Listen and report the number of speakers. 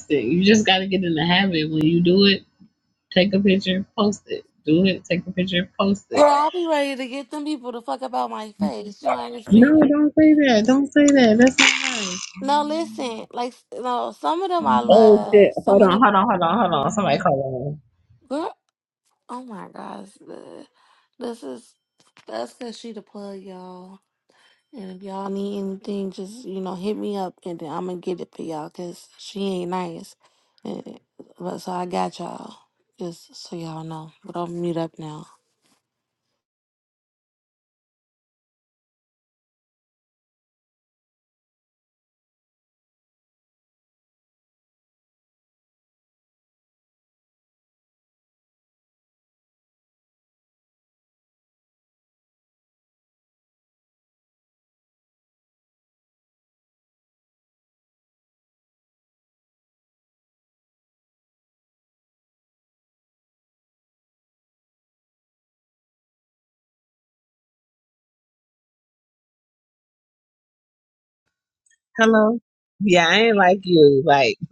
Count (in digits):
2